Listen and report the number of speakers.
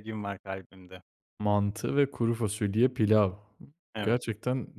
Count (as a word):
two